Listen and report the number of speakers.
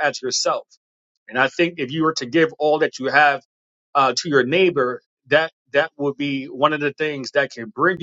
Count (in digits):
1